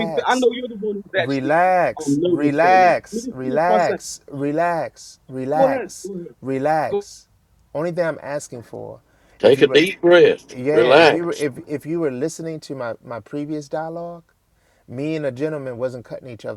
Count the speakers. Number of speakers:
three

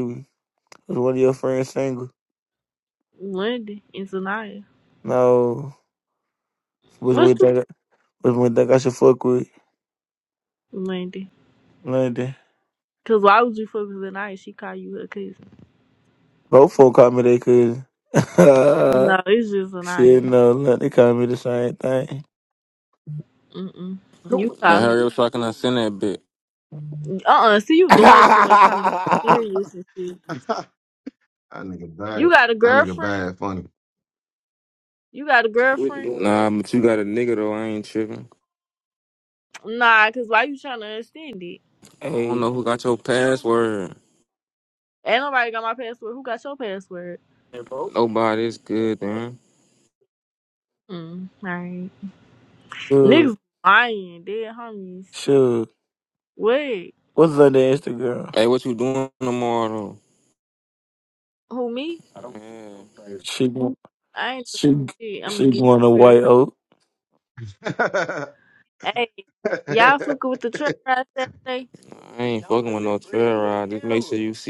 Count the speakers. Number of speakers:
four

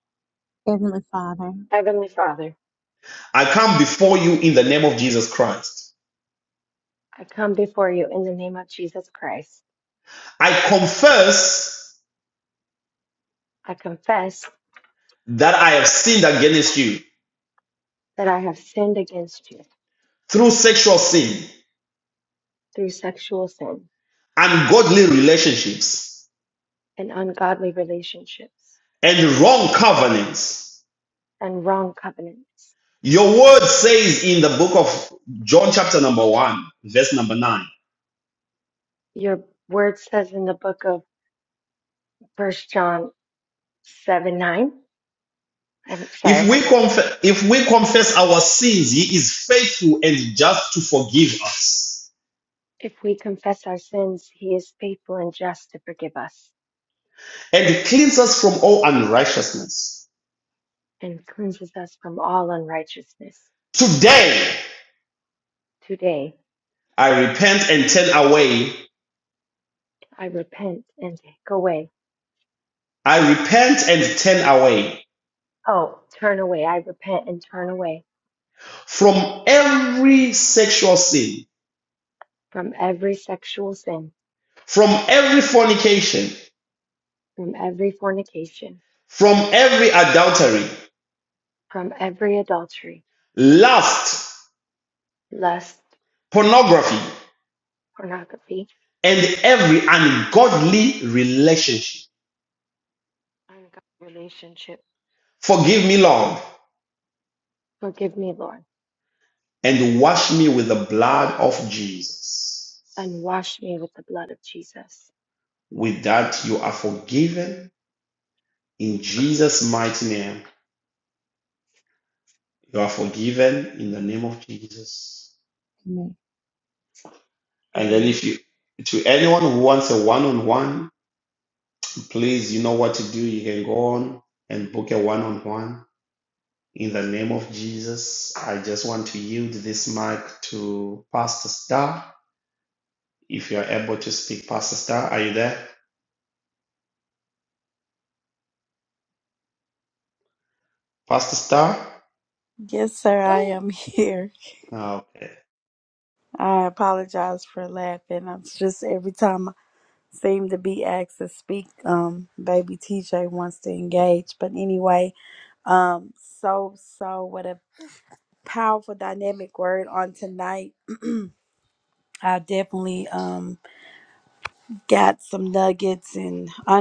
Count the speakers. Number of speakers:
four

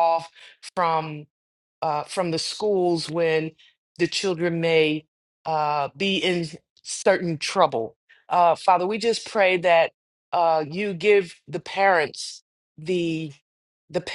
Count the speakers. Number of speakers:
one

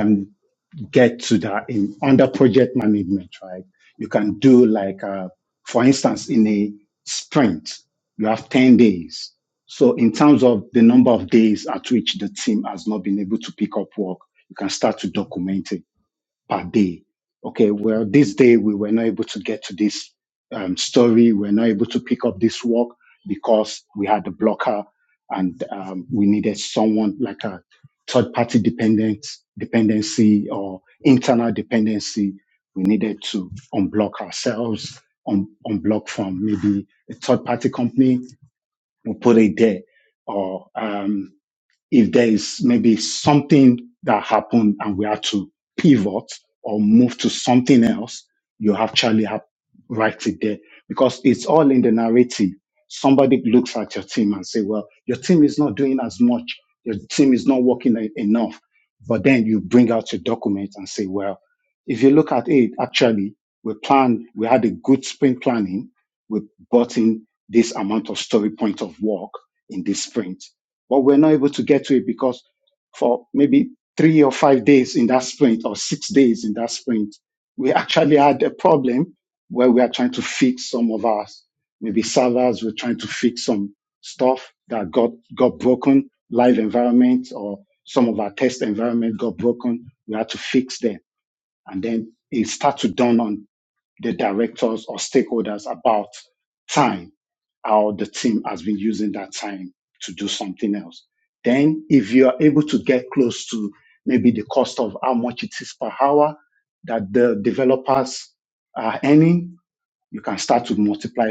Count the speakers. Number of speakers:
one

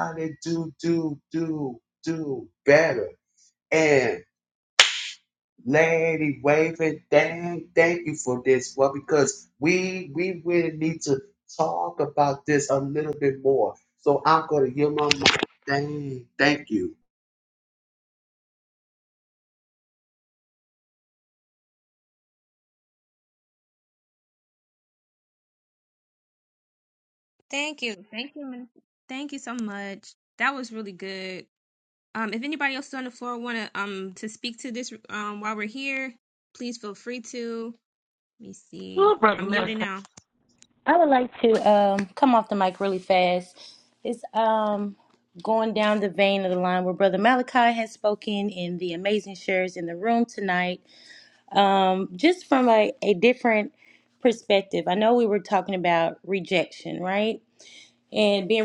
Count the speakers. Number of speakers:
three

